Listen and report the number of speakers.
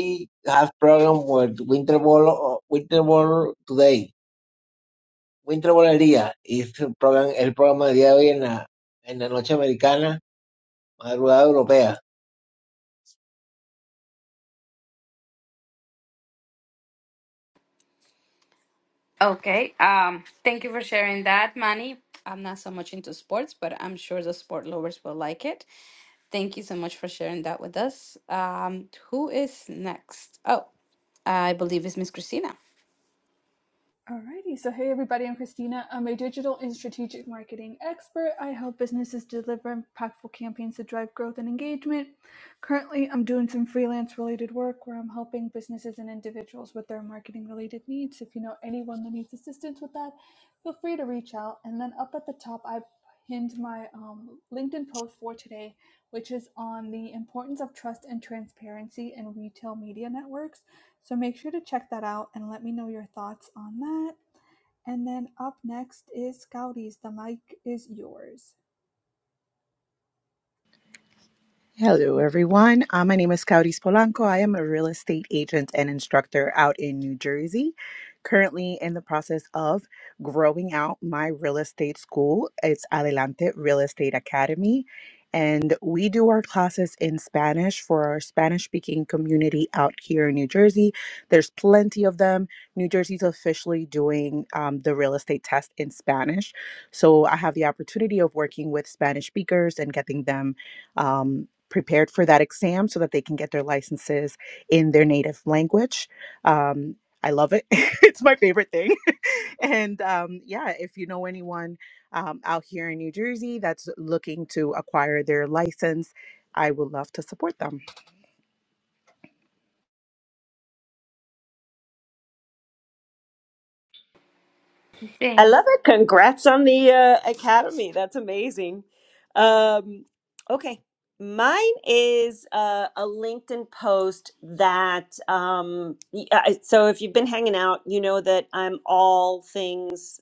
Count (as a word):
five